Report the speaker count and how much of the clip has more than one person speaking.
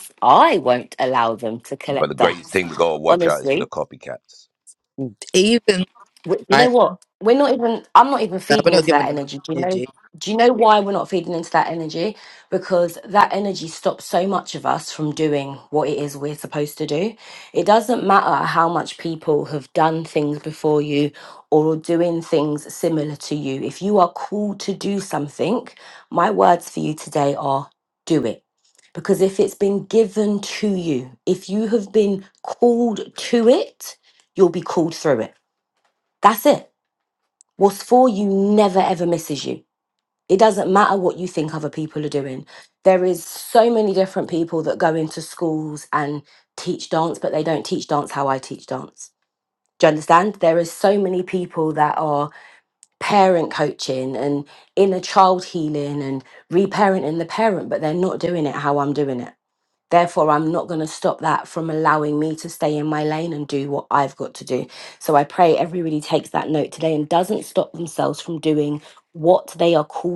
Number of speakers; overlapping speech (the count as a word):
three, about 3%